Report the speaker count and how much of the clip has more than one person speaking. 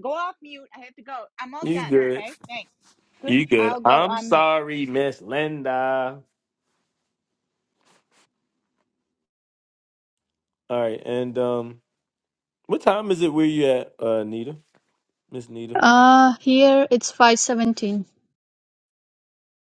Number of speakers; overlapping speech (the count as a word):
three, about 9%